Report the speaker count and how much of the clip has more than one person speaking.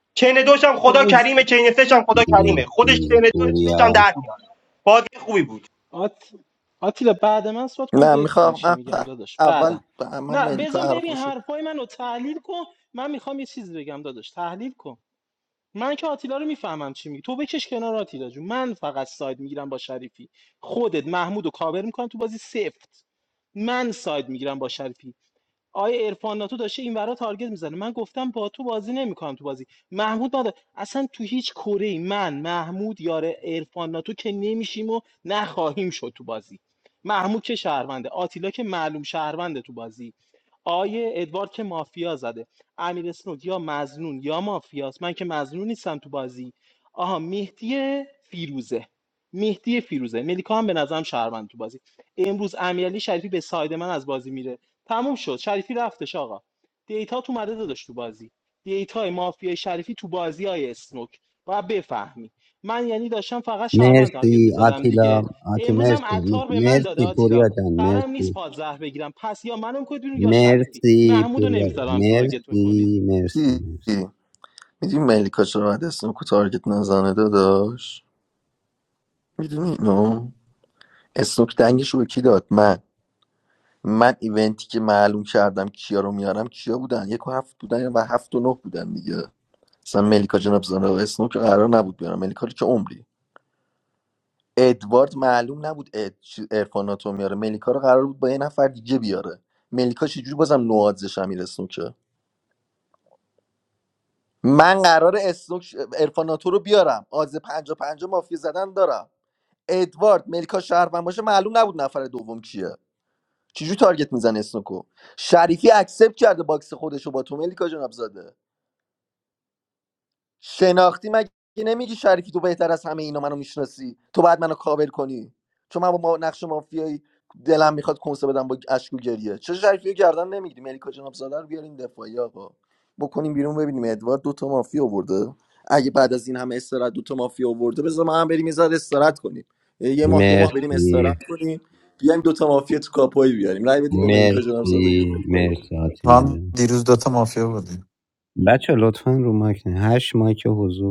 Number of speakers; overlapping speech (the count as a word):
five, about 8%